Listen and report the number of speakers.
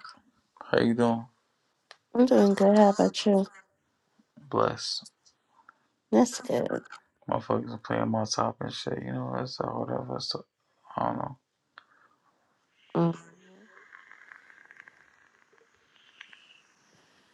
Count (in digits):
2